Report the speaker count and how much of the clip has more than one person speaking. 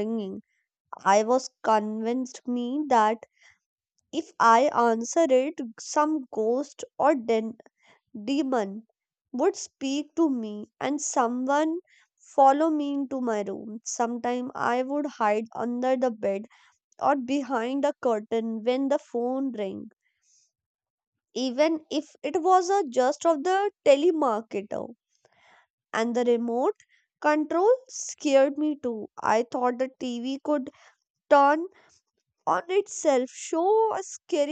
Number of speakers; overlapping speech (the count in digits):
1, no overlap